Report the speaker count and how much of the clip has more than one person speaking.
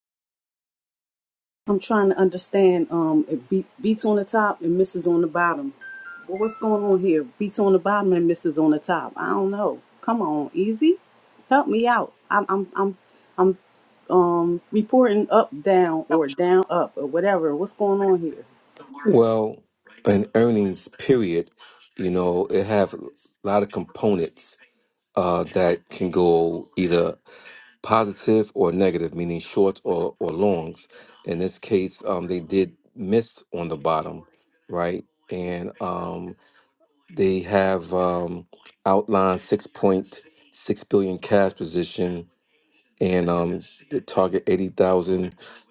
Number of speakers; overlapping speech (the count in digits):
2, no overlap